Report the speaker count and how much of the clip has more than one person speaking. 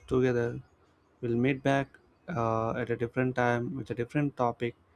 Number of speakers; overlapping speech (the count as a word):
one, no overlap